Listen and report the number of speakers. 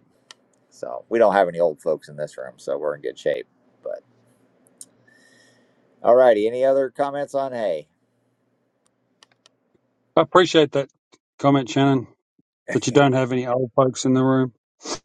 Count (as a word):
two